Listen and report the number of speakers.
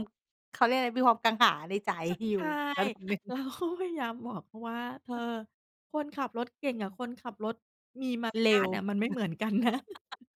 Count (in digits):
2